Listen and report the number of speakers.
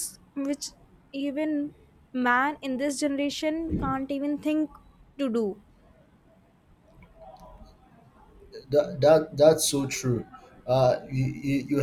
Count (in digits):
2